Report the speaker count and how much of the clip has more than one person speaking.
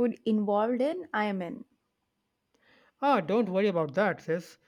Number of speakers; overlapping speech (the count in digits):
2, no overlap